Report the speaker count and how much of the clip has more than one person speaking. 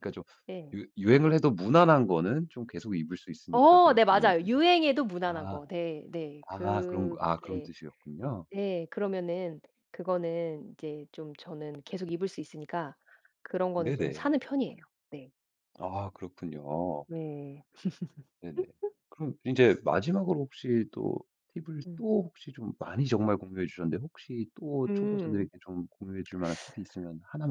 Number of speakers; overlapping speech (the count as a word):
two, about 13%